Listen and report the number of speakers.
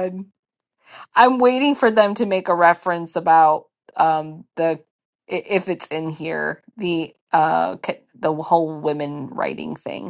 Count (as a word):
one